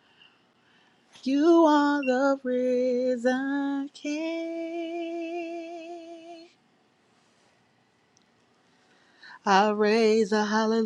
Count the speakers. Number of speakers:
1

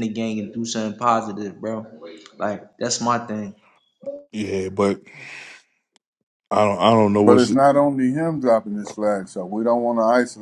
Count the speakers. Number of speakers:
3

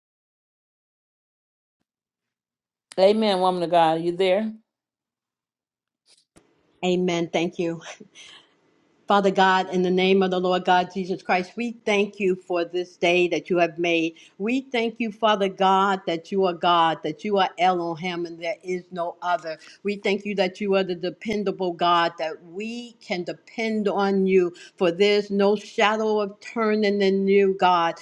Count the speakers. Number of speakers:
2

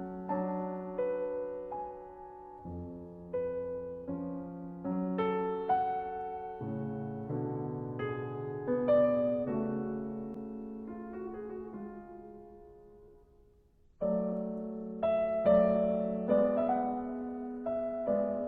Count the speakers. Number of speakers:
0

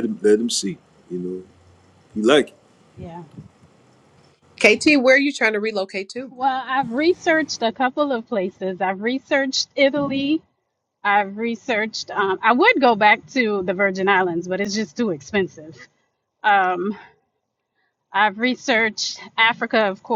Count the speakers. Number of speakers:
3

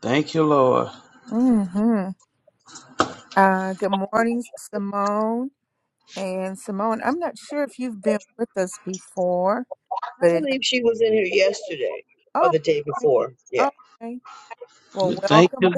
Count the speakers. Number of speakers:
3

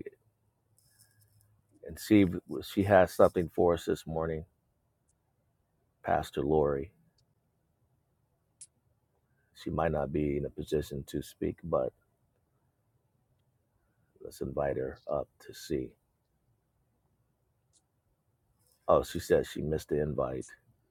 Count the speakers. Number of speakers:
1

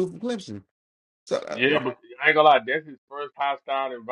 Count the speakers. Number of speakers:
2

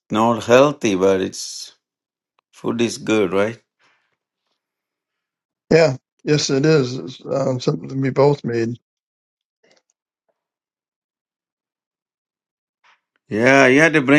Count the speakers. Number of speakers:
2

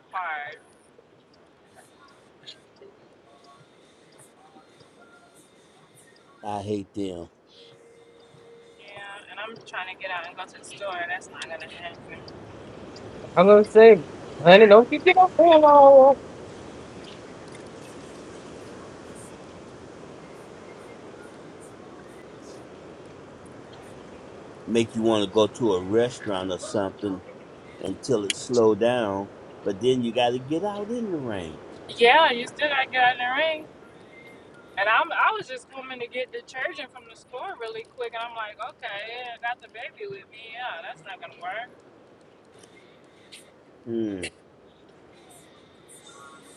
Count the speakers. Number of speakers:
3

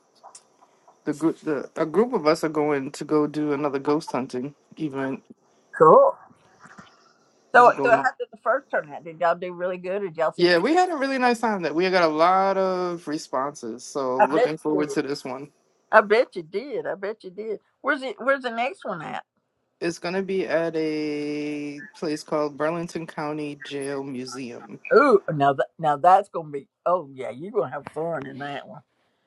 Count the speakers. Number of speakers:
2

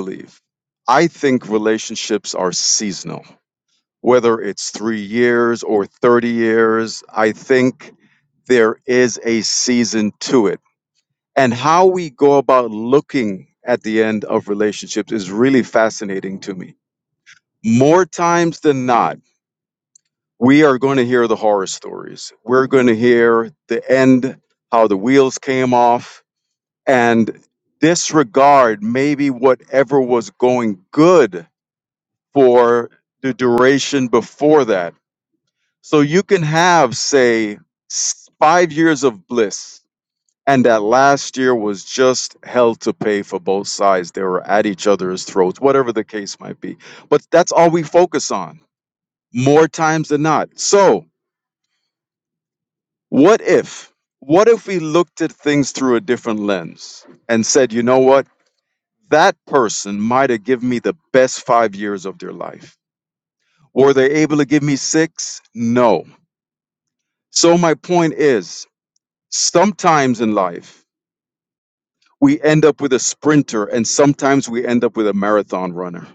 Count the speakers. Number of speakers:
1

